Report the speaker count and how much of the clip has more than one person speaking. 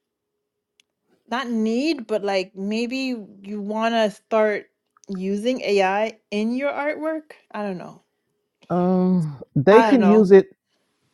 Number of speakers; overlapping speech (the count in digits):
2, about 5%